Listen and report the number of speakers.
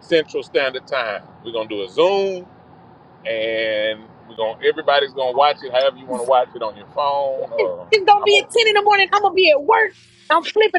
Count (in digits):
2